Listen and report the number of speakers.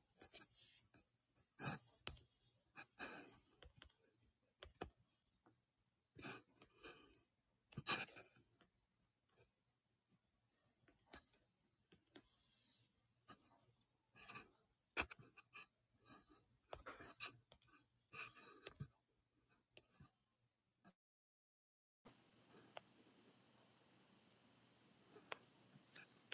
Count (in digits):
0